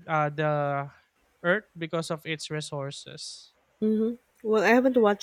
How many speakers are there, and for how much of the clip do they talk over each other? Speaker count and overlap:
two, no overlap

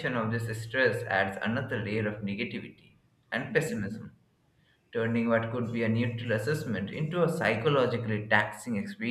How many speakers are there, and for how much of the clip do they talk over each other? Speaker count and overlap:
one, no overlap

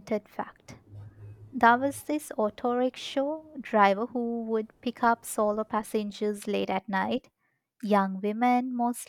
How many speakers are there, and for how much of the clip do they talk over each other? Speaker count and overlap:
one, no overlap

